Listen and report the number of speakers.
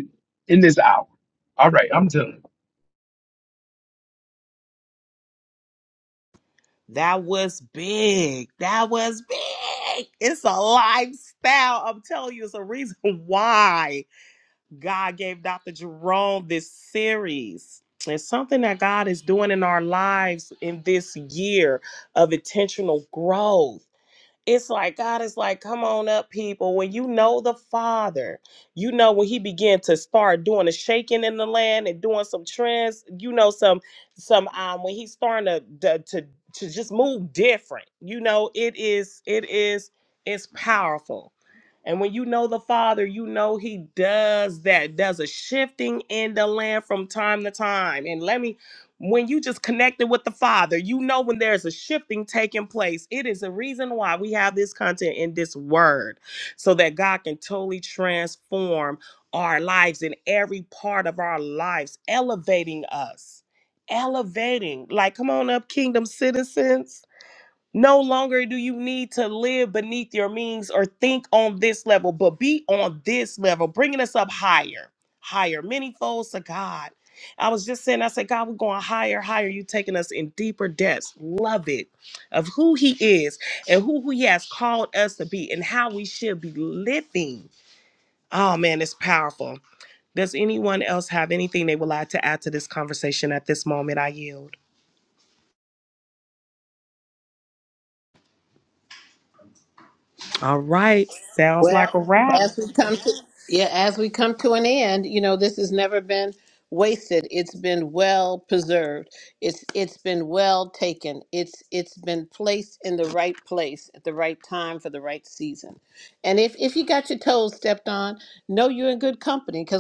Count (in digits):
3